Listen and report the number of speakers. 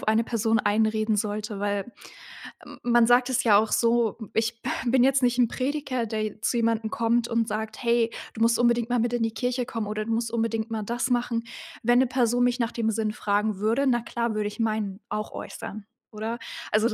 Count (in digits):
1